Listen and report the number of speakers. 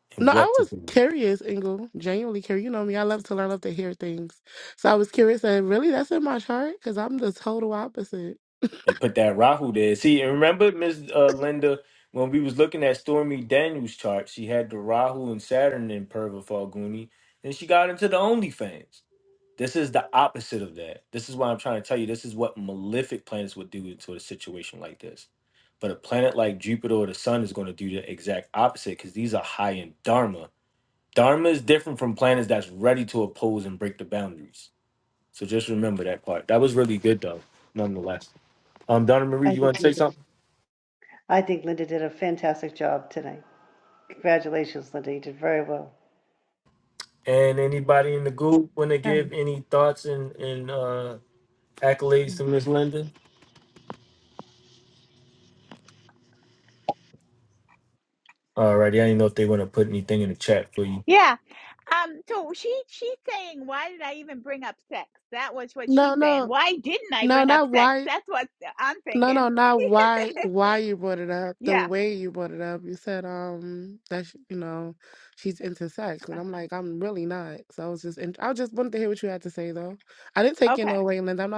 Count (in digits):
4